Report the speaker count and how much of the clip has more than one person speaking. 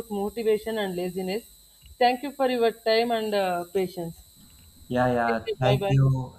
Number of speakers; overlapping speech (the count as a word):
two, about 6%